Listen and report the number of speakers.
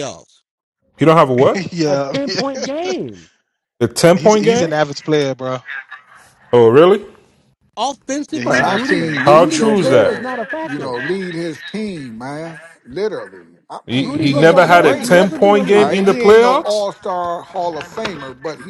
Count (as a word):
four